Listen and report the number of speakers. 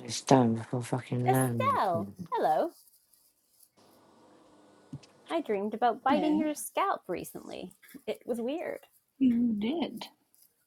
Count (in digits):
3